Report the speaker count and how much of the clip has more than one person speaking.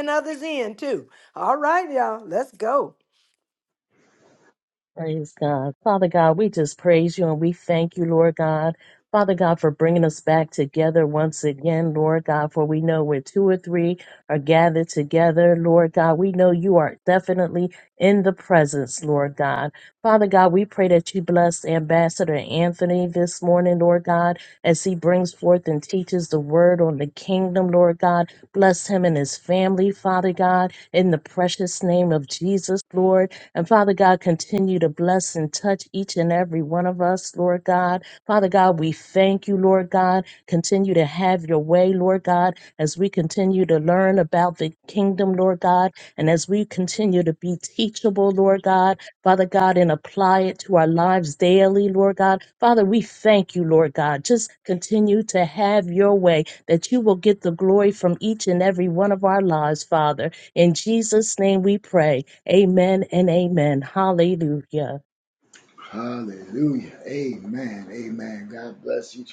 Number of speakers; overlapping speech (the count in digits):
3, no overlap